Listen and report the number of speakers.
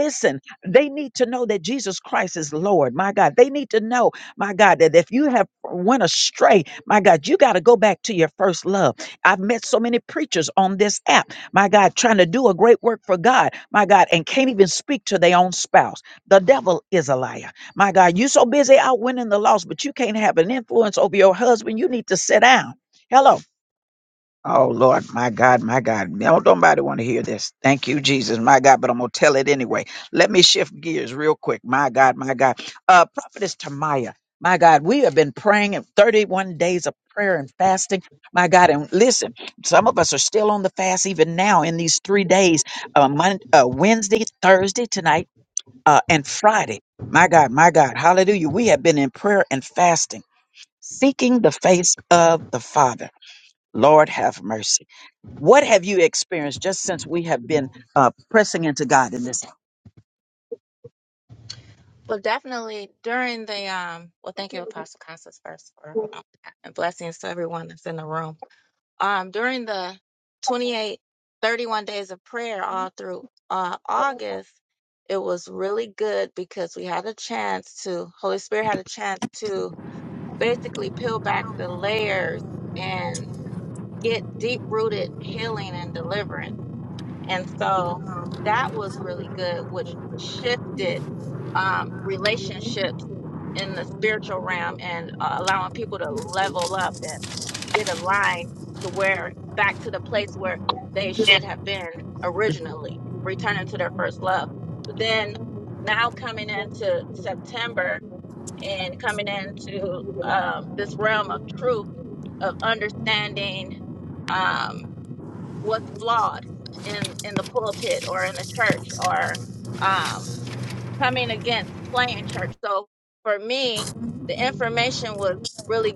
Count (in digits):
2